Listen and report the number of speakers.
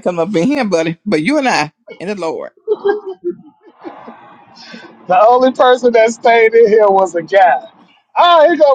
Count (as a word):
two